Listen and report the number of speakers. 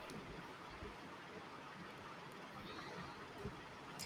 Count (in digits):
0